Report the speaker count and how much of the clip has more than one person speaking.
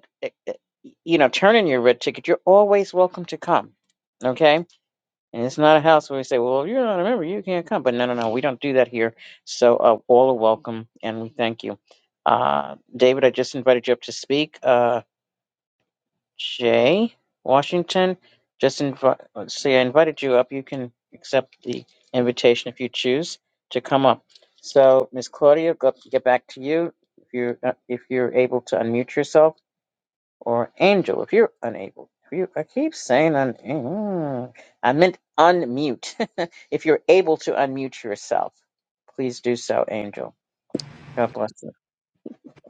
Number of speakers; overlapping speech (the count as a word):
one, no overlap